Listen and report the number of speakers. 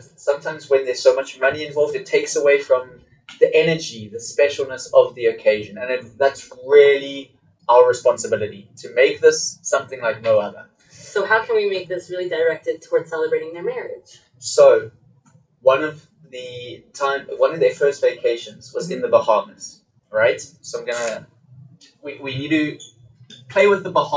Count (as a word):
two